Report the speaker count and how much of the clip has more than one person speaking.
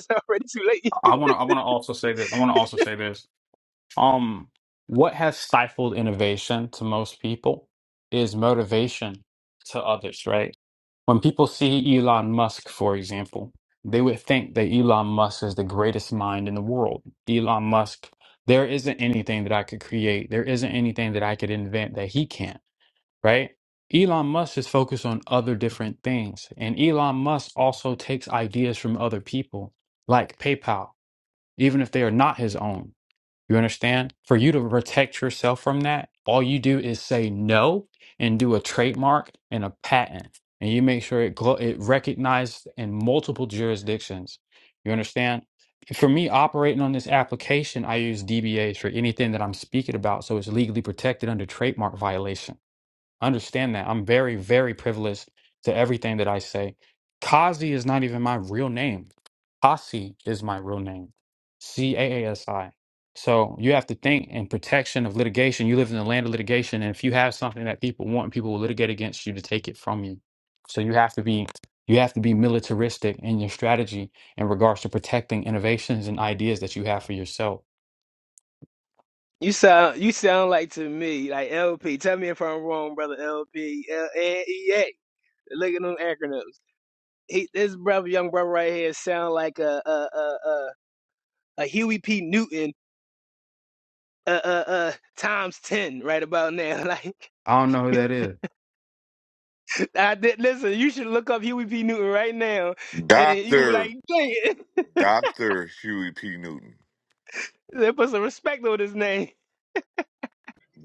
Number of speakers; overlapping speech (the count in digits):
3, about 1%